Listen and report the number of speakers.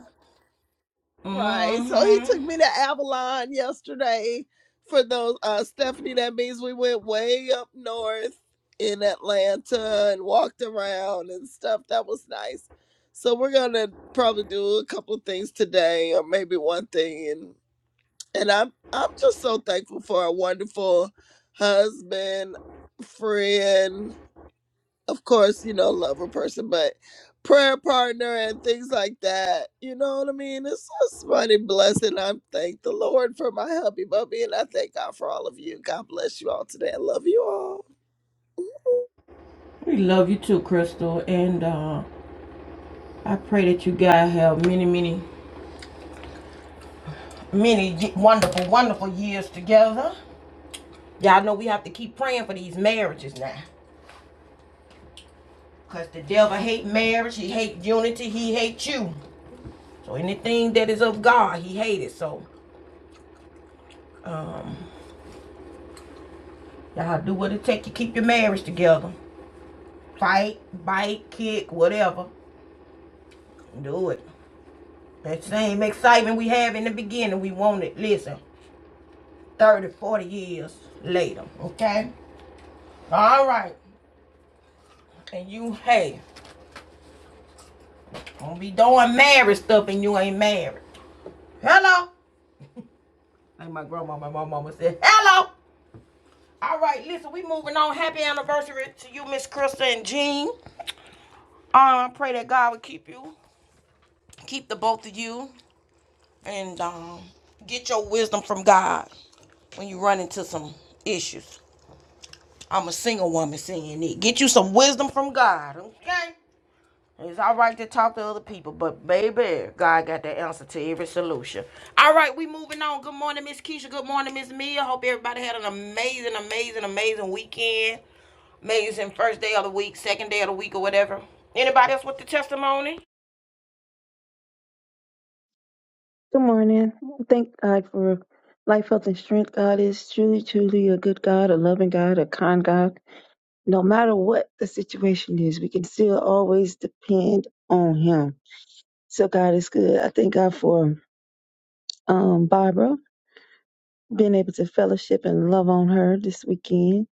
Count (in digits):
3